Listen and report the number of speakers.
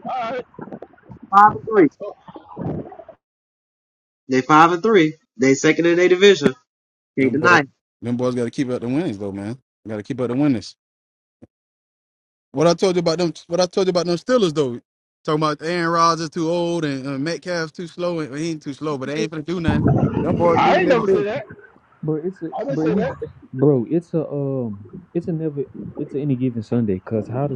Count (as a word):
four